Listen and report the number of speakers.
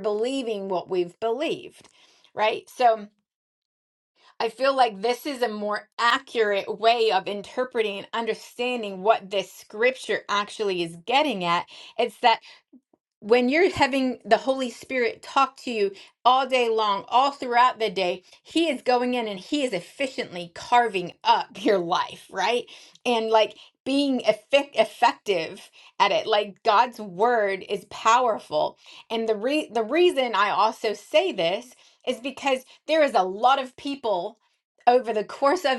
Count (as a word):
one